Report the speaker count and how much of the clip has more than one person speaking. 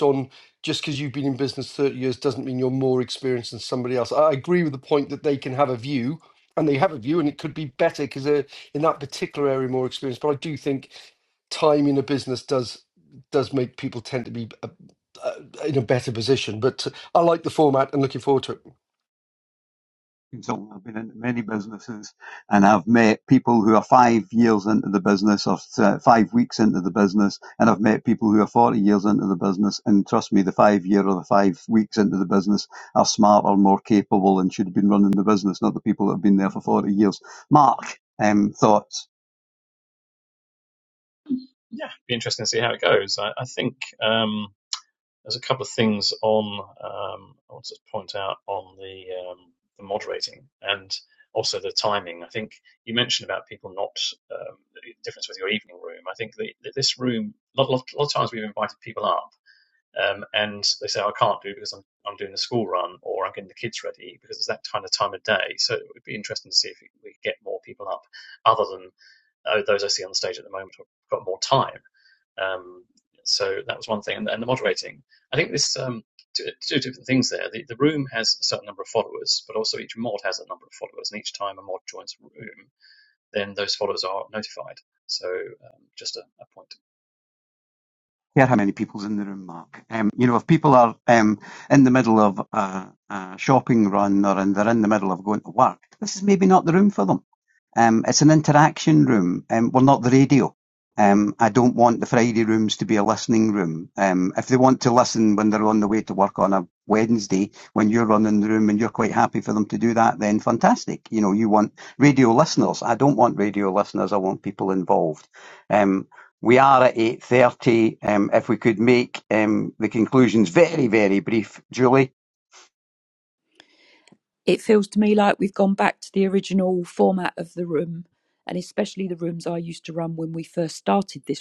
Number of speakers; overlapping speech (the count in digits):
4, no overlap